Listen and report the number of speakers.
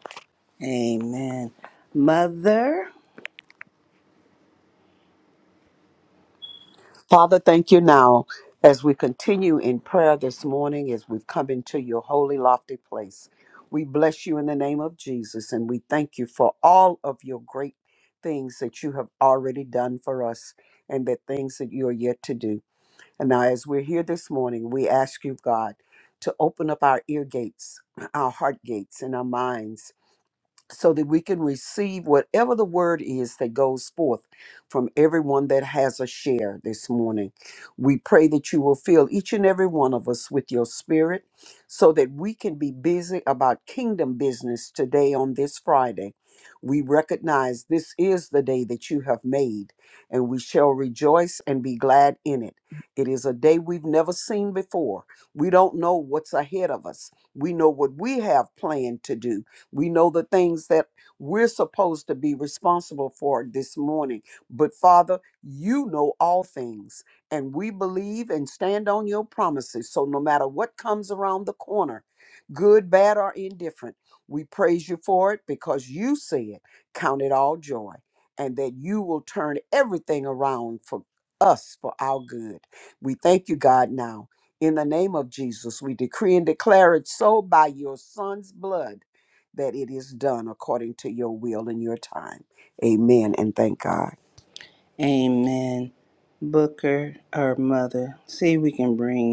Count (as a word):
two